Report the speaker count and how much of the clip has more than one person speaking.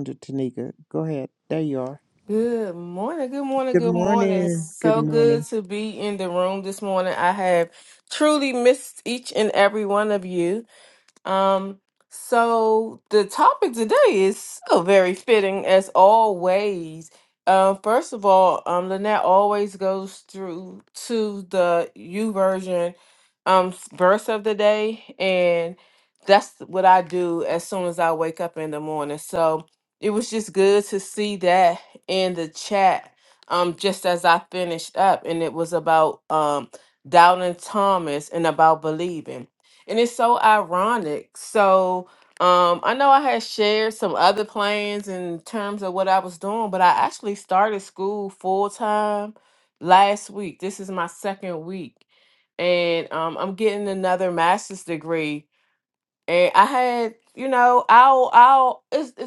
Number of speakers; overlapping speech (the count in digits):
2, about 2%